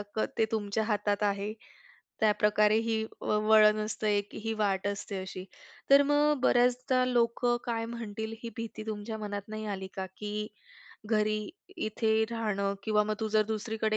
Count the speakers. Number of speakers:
1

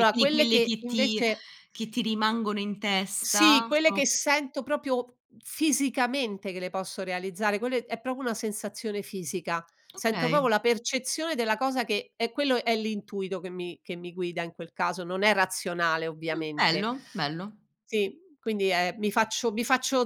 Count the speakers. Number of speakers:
2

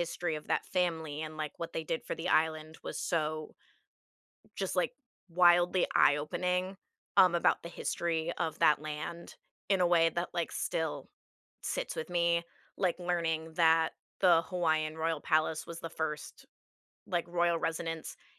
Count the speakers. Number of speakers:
1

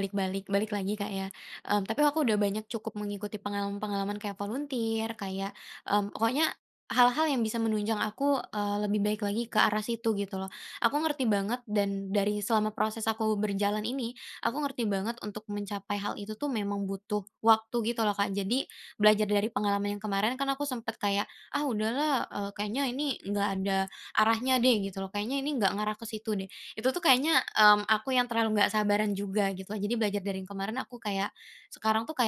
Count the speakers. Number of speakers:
1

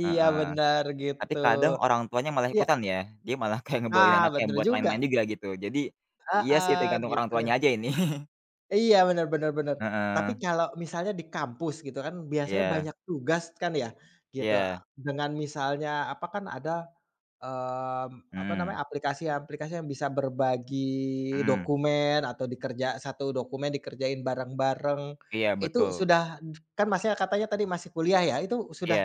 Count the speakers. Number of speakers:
2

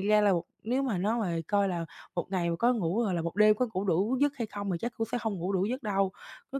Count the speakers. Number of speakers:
1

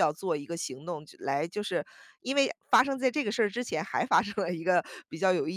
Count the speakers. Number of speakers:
1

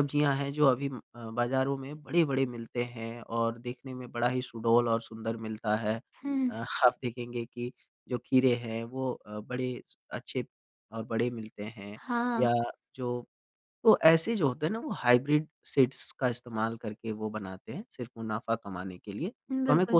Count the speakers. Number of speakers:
2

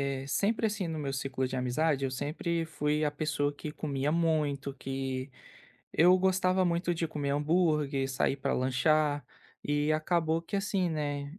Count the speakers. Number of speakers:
1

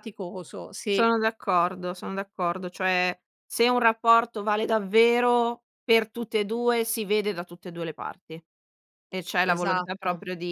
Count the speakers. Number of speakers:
2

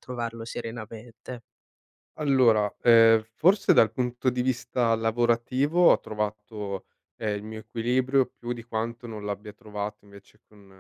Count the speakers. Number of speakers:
2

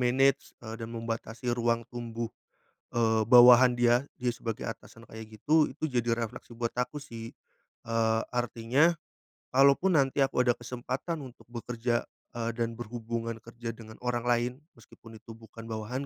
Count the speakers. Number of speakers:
1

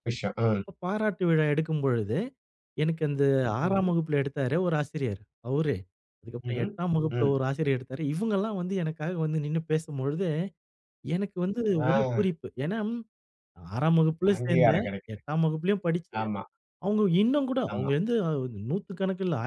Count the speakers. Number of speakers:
2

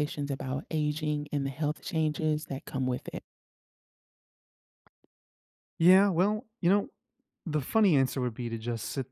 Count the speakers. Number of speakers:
2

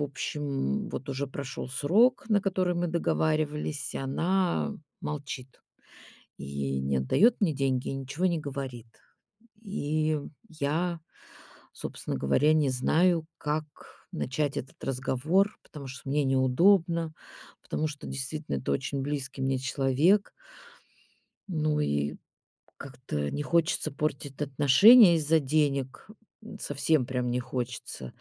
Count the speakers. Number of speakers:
1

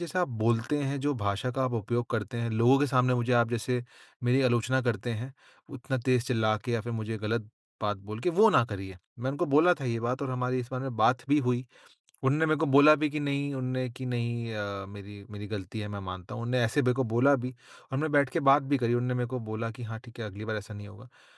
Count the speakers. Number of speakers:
1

